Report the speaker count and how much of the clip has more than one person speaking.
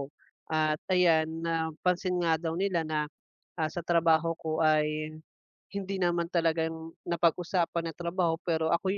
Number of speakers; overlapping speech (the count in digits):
1, no overlap